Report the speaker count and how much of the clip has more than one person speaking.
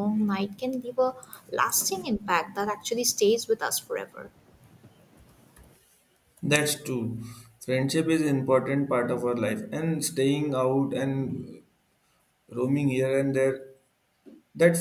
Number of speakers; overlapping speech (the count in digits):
2, no overlap